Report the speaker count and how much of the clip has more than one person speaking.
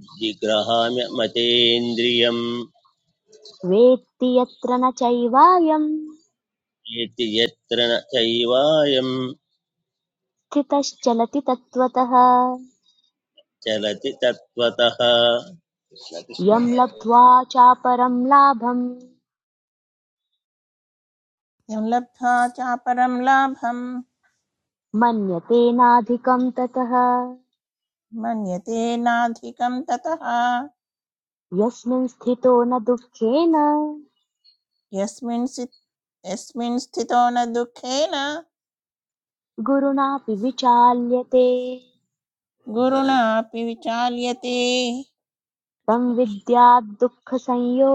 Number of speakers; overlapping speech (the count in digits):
3, no overlap